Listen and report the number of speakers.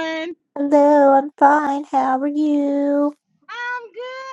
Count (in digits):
2